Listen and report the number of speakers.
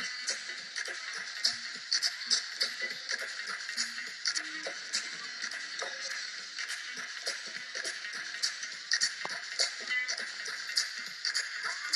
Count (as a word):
zero